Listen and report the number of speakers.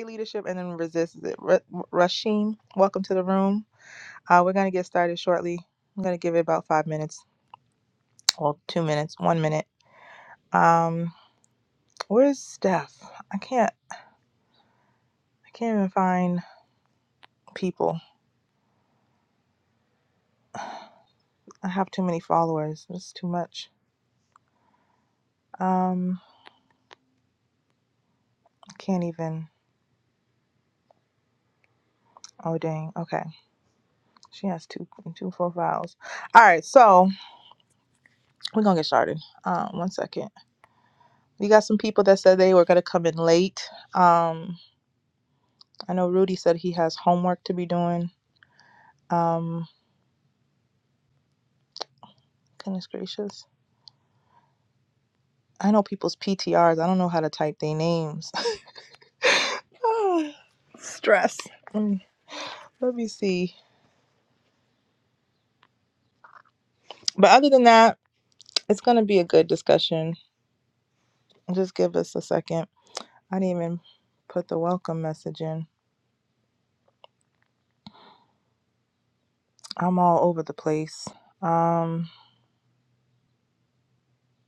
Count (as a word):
one